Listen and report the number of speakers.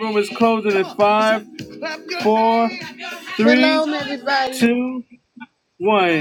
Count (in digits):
2